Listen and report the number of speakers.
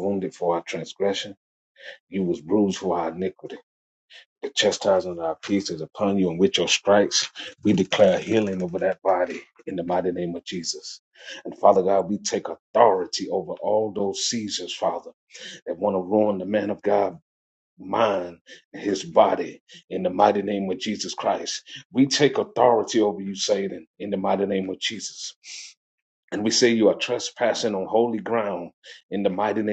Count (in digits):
1